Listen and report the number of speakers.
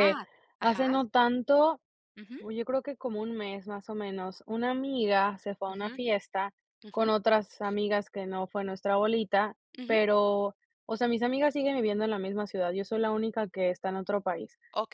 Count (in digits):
2